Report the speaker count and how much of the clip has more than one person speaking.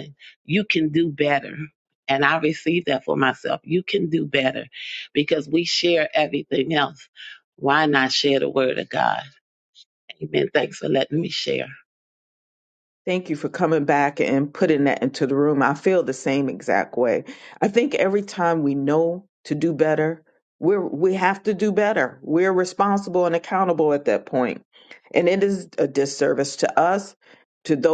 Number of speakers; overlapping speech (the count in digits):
2, no overlap